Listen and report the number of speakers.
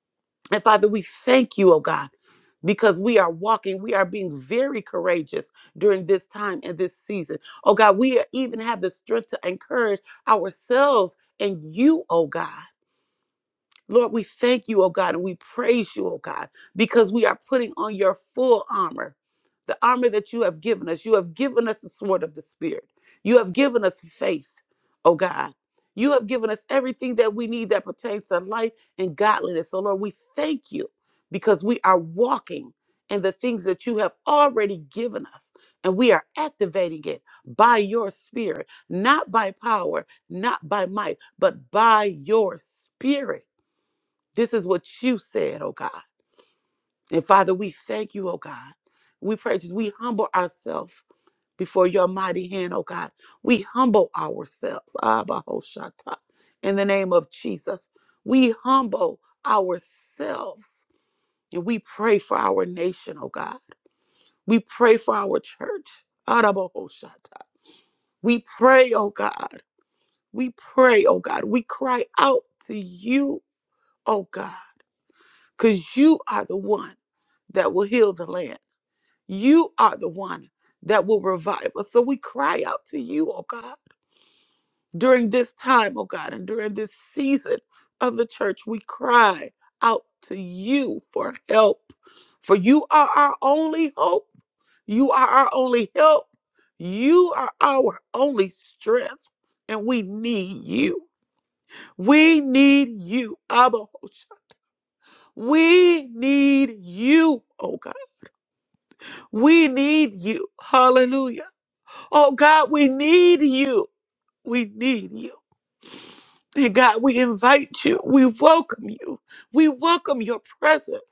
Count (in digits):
1